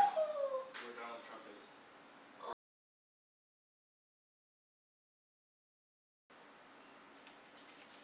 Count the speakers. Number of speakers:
one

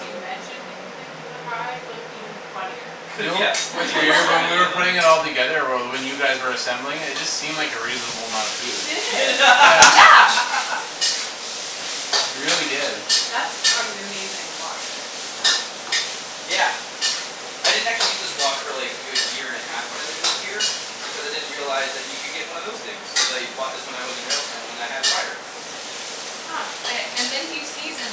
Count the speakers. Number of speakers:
four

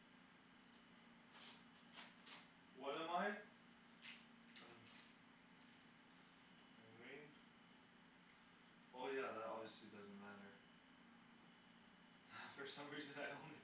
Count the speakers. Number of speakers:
one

